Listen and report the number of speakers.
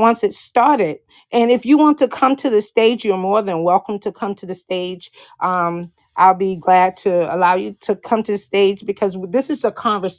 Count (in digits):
1